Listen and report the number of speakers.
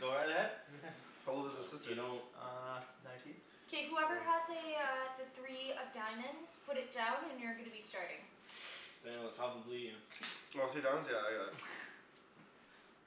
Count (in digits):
4